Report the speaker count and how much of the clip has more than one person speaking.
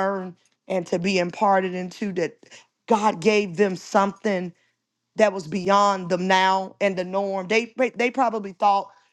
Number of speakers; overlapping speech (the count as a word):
one, no overlap